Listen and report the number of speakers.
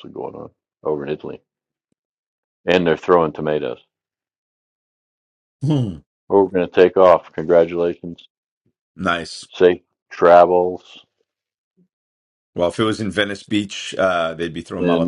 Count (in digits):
2